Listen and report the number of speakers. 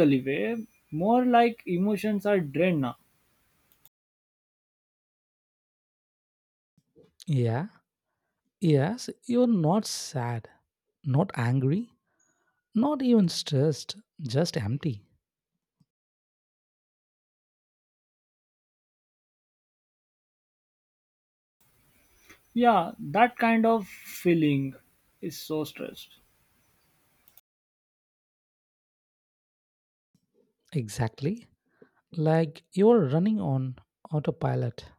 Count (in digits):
2